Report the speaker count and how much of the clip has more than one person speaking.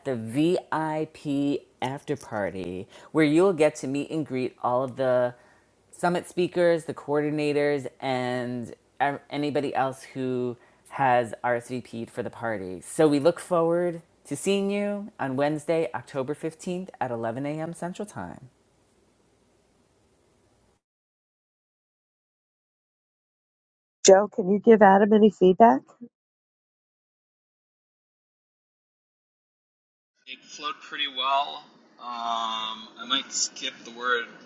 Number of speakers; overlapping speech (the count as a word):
three, no overlap